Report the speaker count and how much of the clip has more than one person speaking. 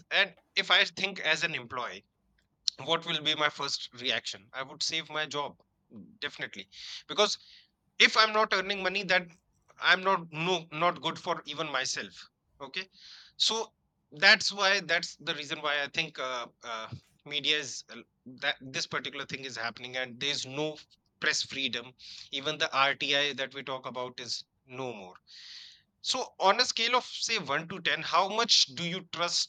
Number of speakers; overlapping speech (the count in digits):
1, no overlap